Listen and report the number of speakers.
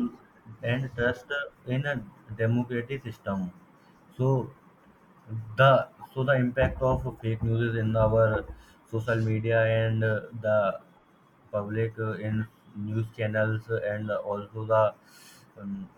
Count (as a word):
one